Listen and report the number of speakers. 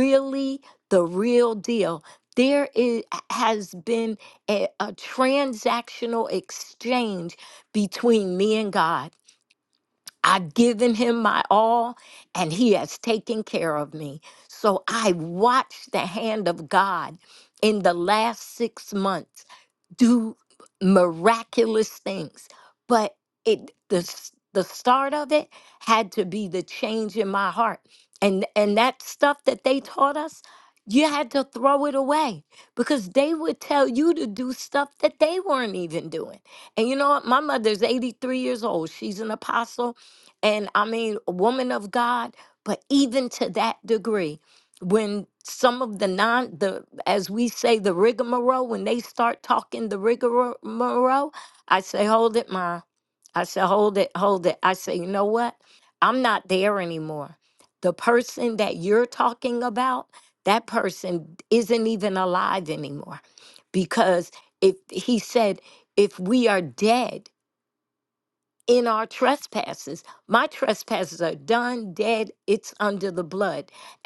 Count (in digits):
1